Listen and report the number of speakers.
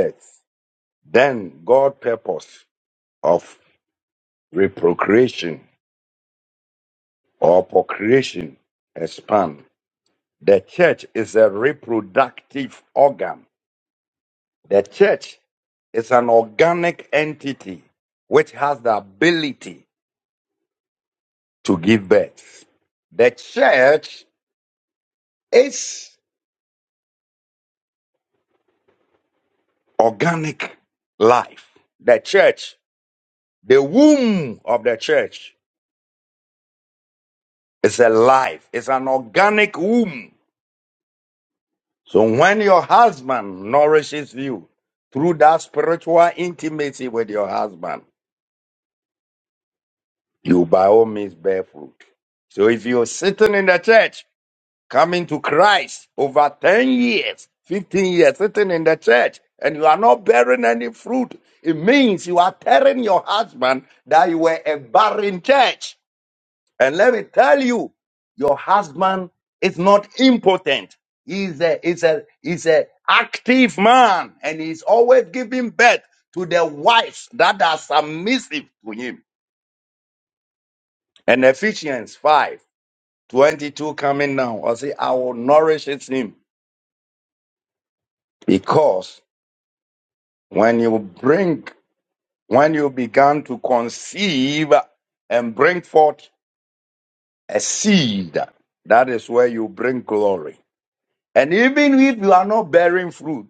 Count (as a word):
one